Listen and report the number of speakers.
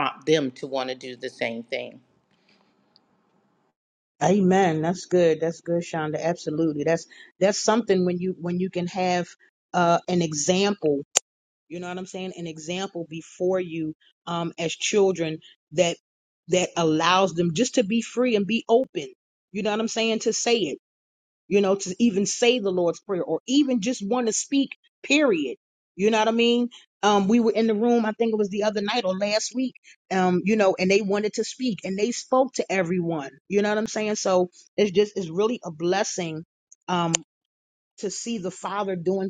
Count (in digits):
2